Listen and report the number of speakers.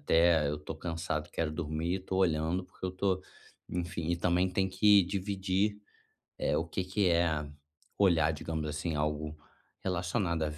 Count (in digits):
1